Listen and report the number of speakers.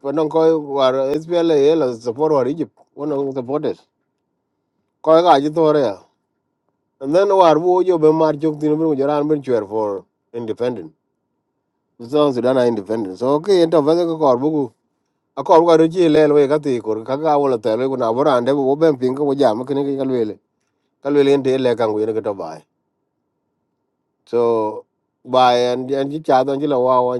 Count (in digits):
1